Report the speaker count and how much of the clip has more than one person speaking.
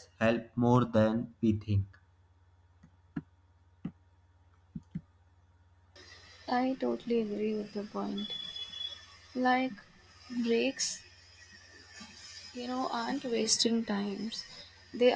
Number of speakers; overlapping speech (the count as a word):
two, no overlap